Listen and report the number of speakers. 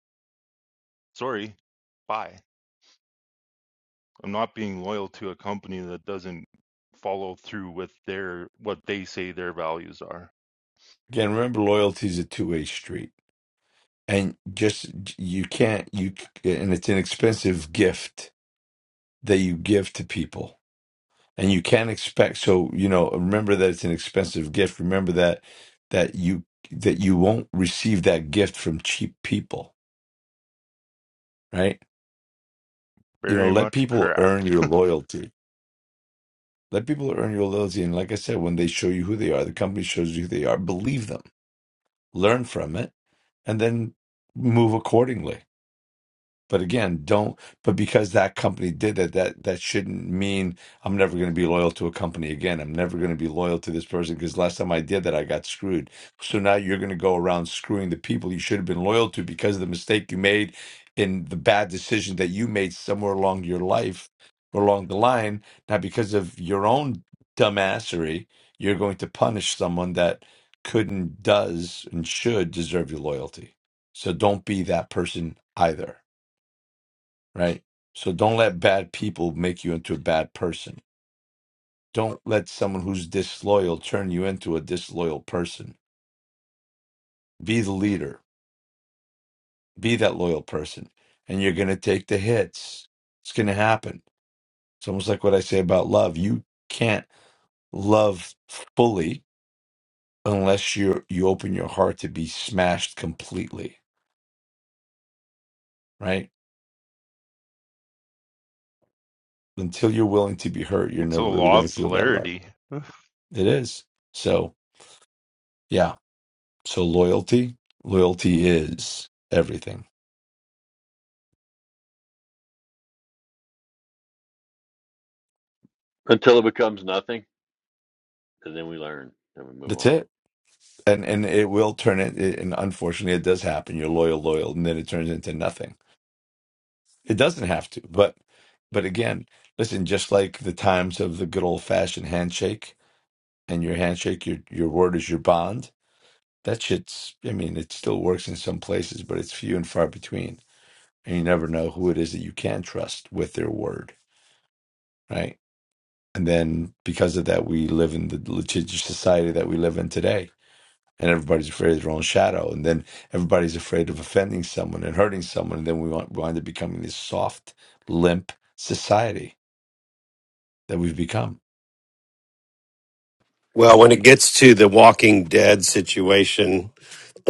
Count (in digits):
4